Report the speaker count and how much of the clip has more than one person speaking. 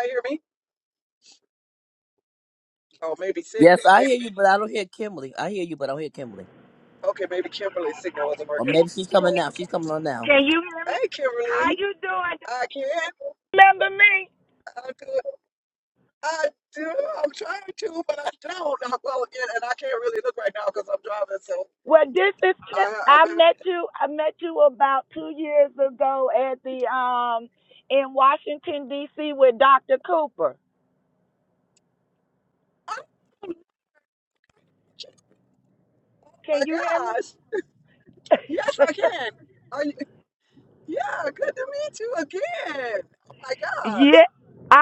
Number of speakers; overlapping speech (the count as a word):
three, about 6%